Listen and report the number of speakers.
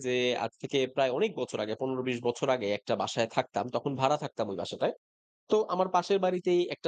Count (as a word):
one